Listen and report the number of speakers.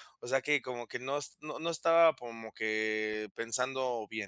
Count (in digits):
1